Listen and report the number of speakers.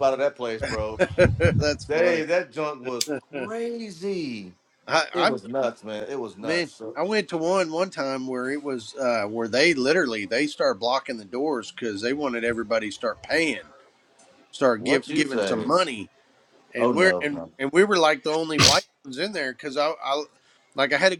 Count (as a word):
two